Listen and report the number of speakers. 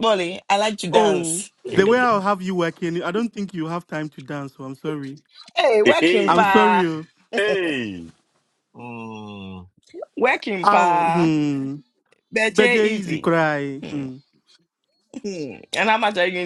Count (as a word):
three